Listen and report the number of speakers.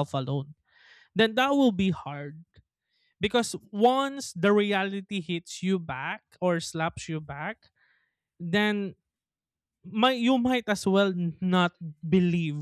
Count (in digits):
1